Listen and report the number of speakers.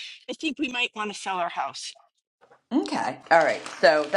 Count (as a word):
two